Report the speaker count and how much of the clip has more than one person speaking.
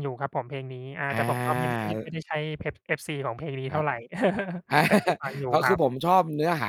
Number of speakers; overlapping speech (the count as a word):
two, about 11%